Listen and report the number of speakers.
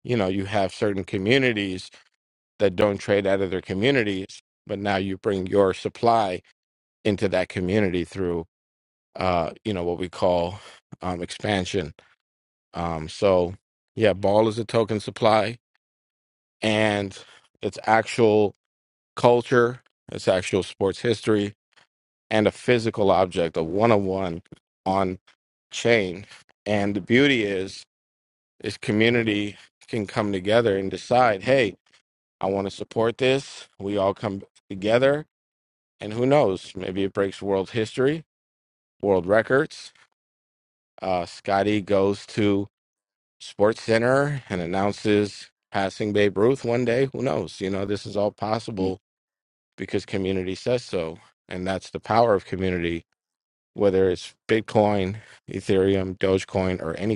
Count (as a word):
one